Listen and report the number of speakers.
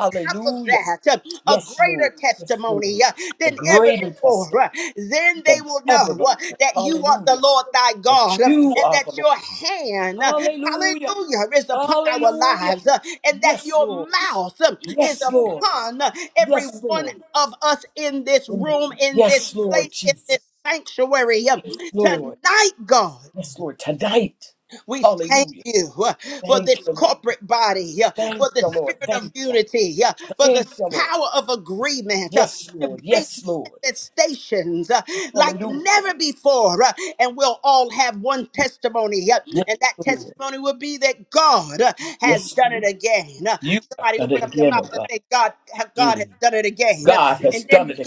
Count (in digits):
2